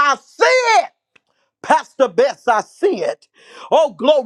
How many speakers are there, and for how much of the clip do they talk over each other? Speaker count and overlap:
1, no overlap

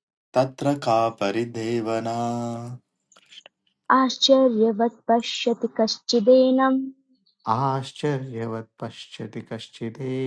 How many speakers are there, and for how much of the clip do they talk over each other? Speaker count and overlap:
3, no overlap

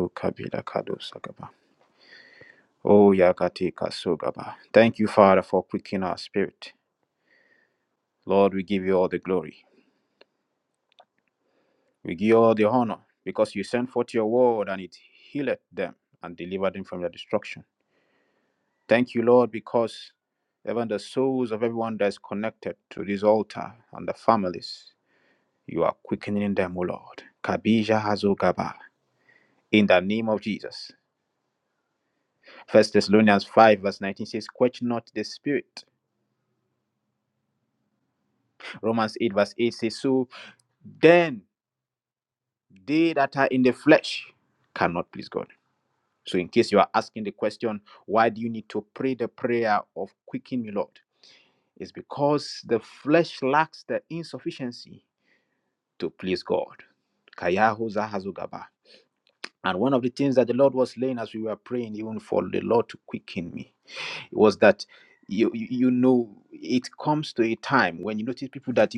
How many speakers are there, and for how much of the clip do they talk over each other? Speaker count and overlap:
1, no overlap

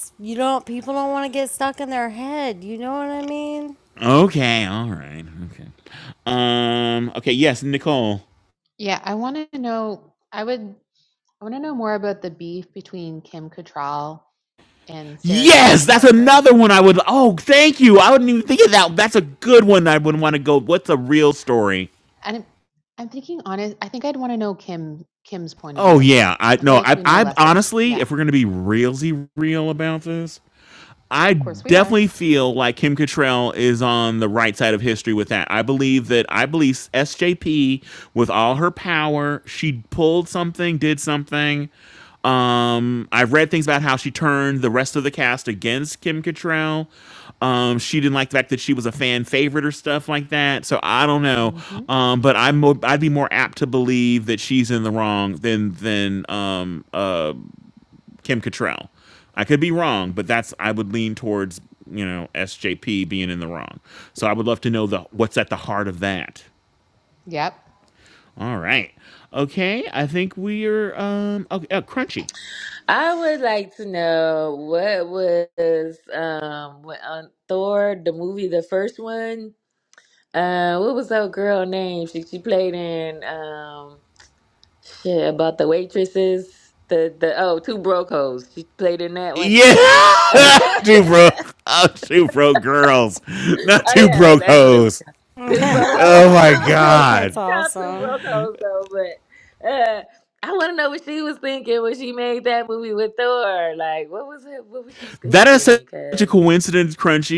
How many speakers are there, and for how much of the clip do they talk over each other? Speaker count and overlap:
4, about 7%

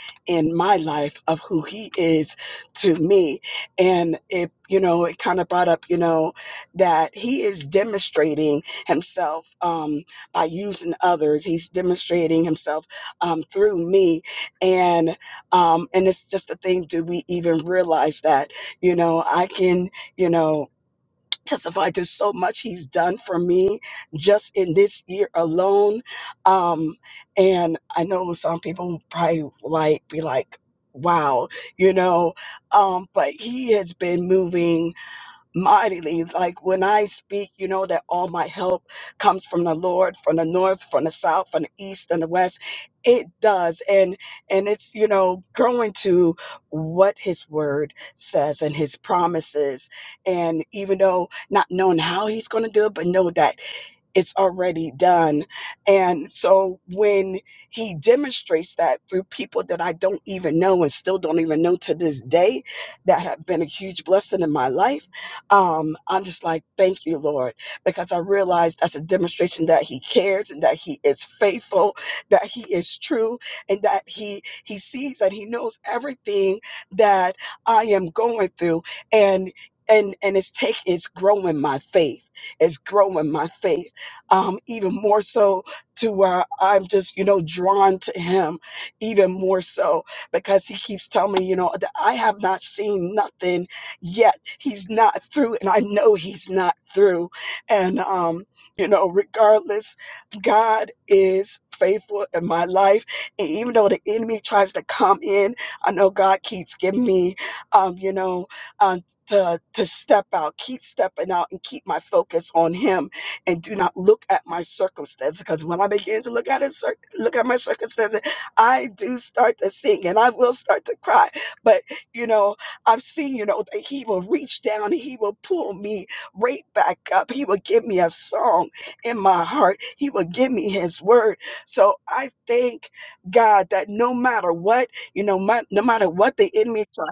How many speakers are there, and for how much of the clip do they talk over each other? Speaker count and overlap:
1, no overlap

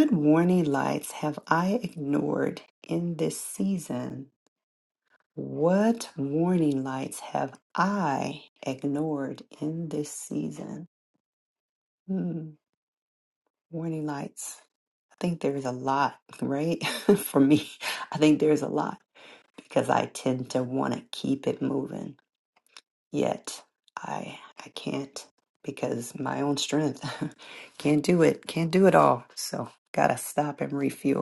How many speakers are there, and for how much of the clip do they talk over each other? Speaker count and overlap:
1, no overlap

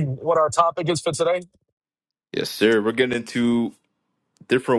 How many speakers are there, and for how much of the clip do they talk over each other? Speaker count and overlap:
2, no overlap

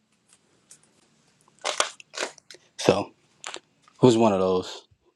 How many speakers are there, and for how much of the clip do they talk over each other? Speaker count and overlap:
1, no overlap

